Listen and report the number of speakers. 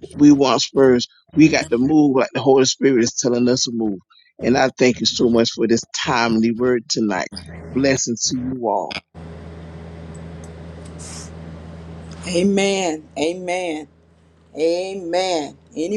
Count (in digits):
2